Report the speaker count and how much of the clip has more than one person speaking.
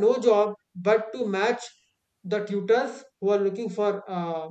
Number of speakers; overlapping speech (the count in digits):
1, no overlap